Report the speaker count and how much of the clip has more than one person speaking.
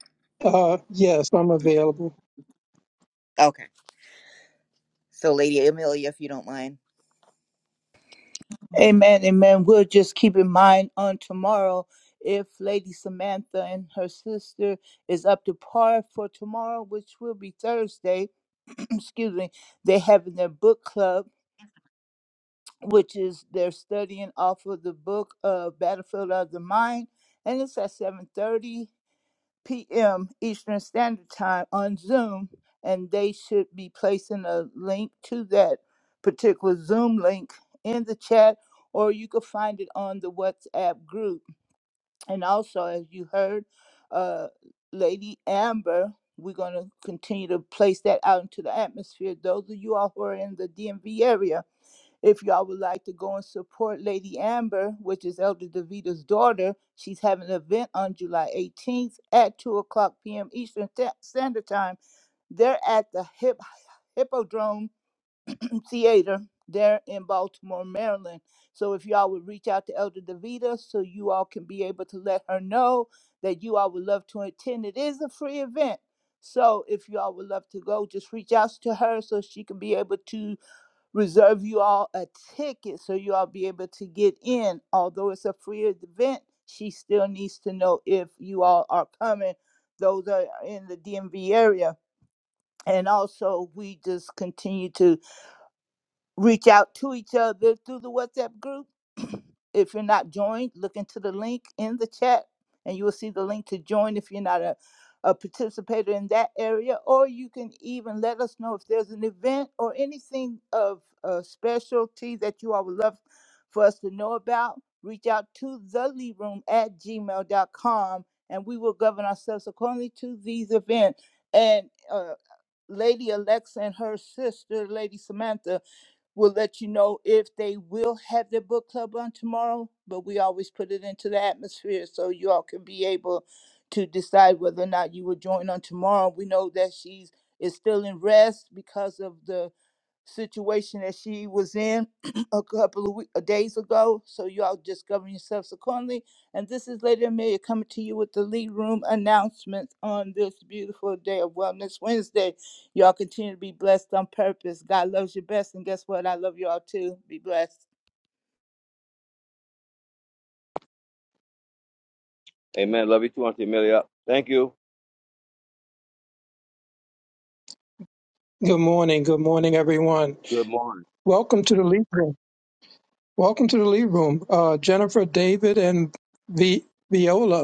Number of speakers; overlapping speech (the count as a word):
four, no overlap